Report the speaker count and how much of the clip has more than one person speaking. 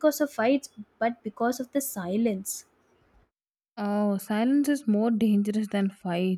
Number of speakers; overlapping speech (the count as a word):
two, no overlap